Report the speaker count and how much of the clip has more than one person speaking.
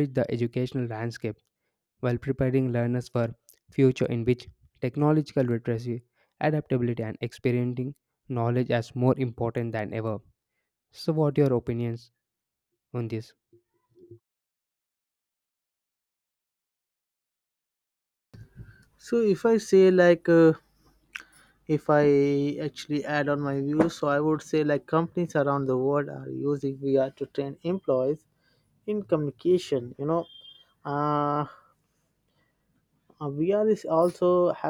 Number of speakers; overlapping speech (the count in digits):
2, no overlap